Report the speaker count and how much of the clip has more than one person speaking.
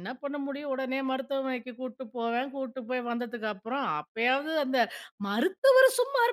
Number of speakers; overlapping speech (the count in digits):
1, no overlap